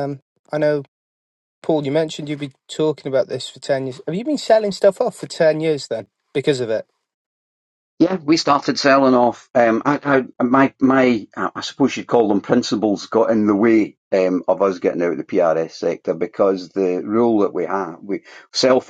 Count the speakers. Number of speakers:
two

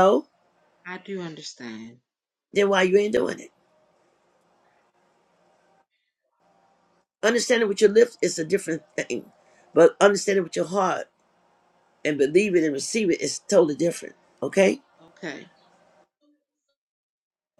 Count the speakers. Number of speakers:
two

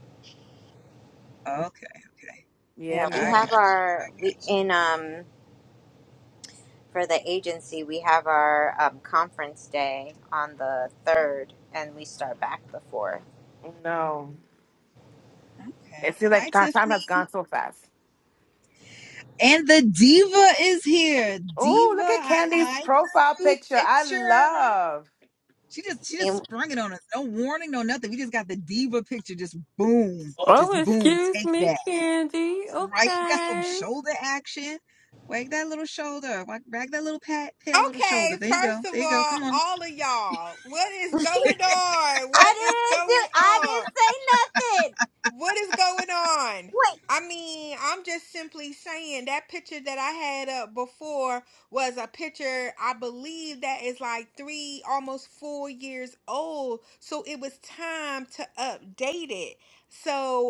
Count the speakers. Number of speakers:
five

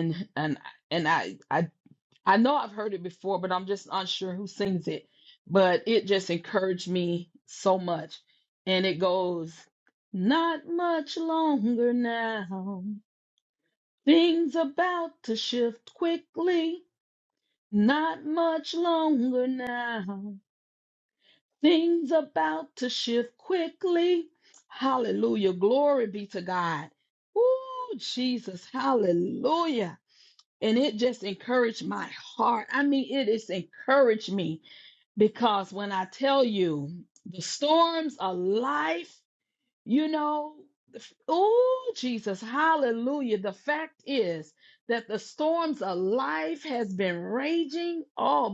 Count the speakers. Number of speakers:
one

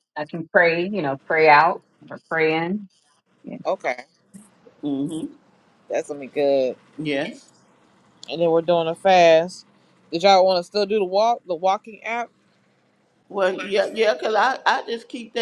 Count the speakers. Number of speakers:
three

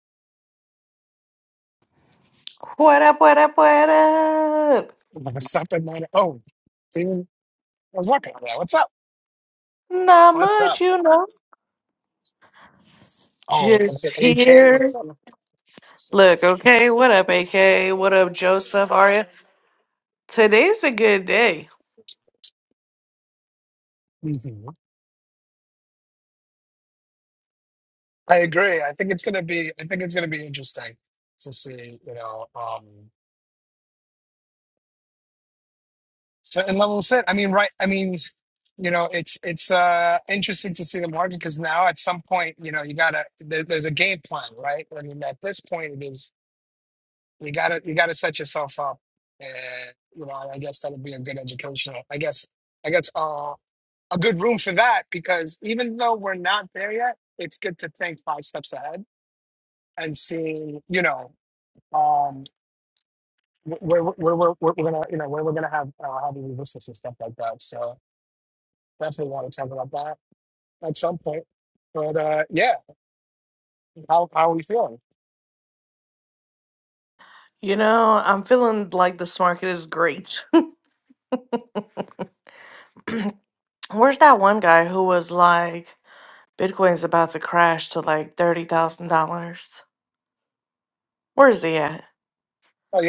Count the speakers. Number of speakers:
two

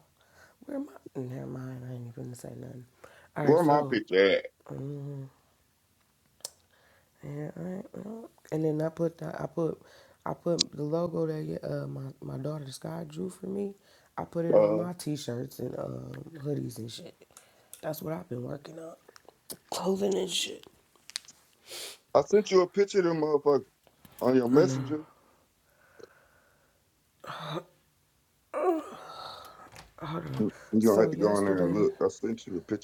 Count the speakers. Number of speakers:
two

